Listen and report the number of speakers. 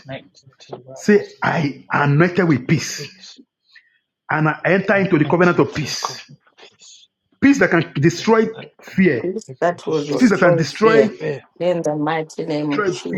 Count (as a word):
three